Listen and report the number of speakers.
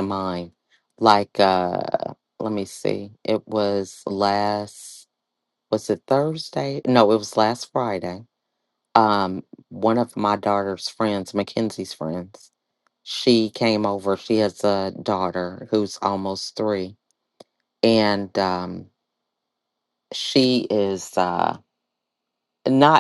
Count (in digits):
1